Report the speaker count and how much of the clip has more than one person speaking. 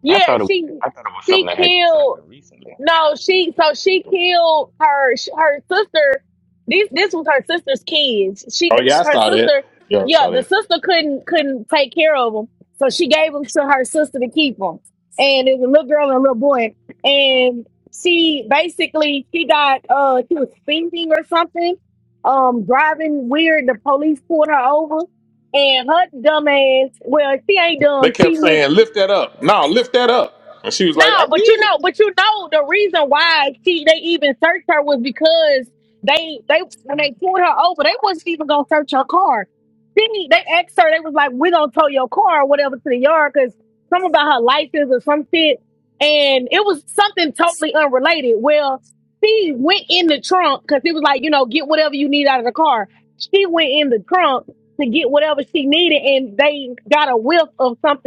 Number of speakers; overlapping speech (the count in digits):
3, about 7%